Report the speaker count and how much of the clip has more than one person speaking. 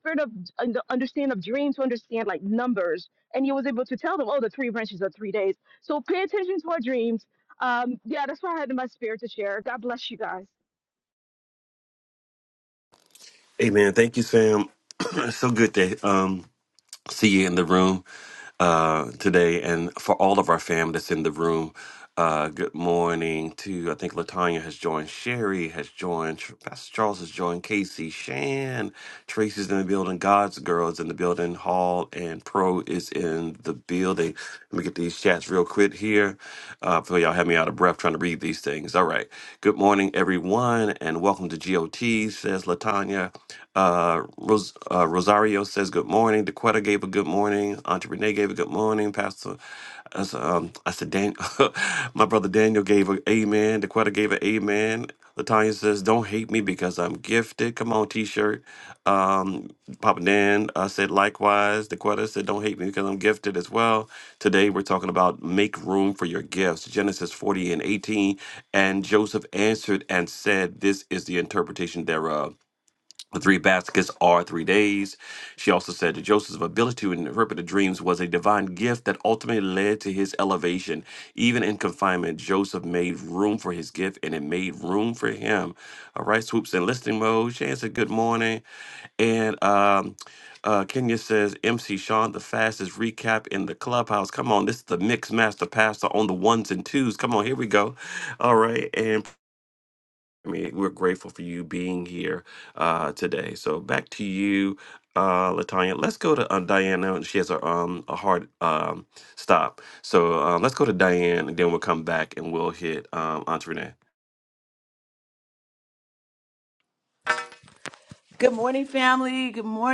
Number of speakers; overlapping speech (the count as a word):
three, no overlap